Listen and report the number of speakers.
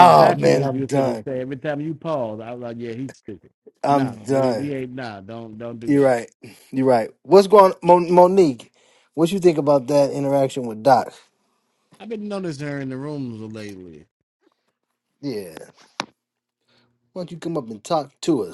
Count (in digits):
2